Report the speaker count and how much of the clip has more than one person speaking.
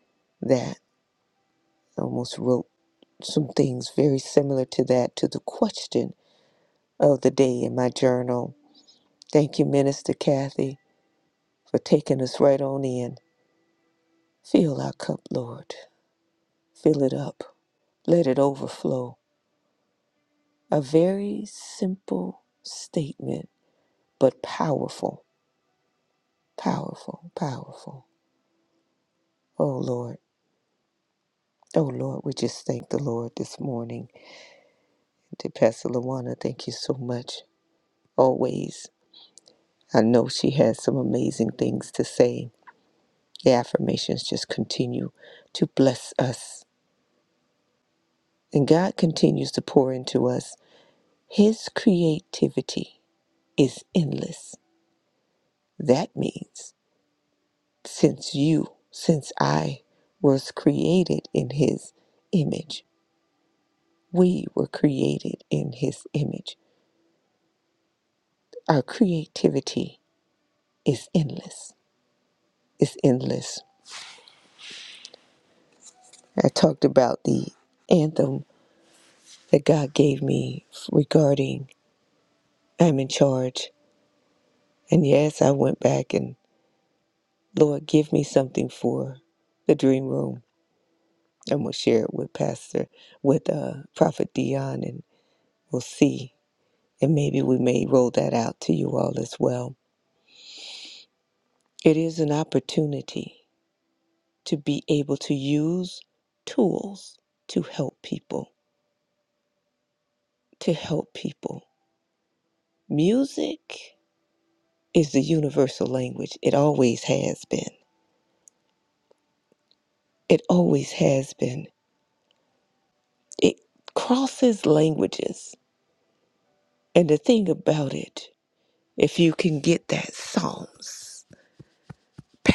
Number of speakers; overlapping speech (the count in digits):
1, no overlap